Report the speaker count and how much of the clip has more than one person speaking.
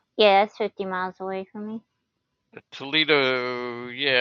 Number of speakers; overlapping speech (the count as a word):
two, no overlap